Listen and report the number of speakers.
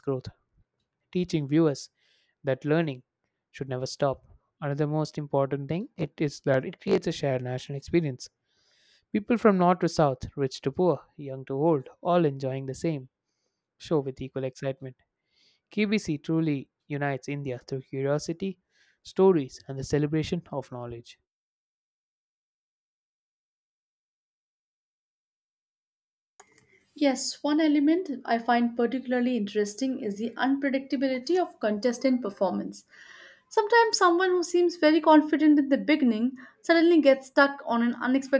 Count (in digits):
2